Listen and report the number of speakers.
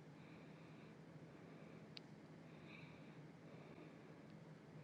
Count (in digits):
0